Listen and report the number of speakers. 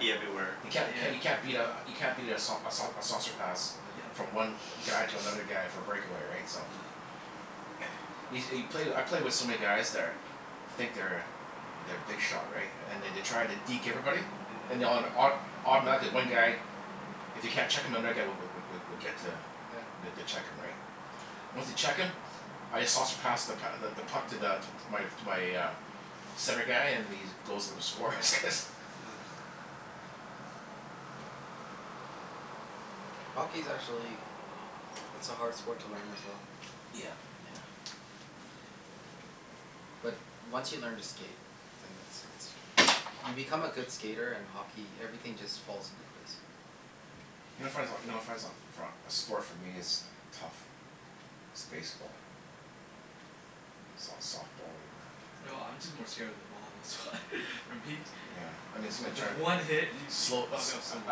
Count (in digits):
4